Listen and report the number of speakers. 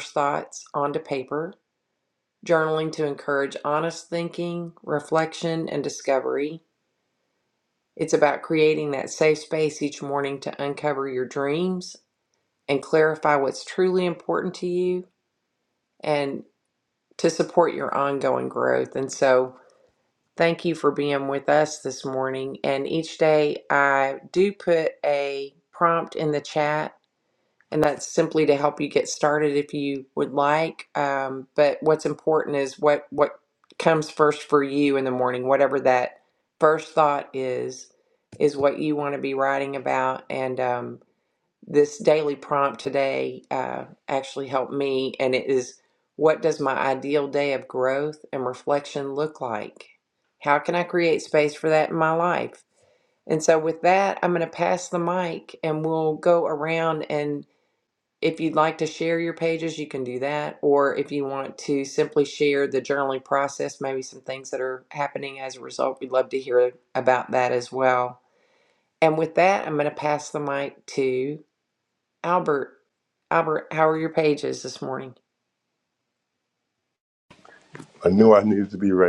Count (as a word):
two